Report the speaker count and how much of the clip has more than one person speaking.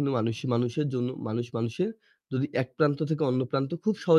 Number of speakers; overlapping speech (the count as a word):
one, no overlap